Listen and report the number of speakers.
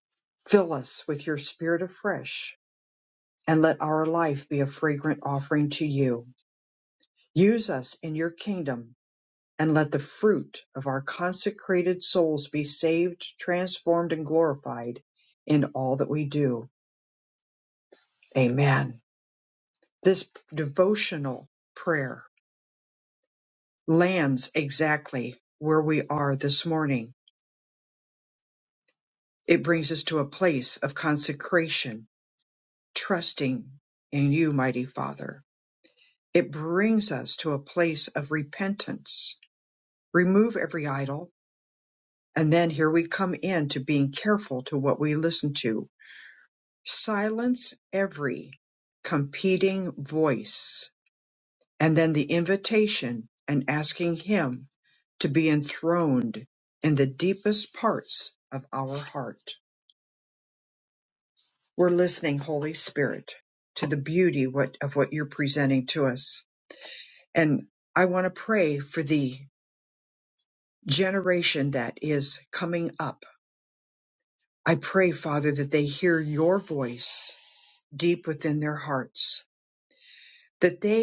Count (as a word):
one